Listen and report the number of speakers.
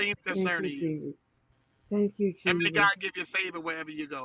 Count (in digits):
2